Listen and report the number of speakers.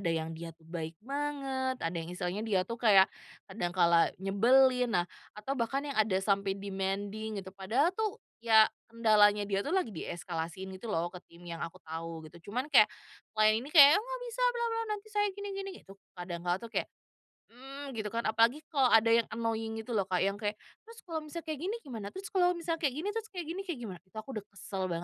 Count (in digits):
1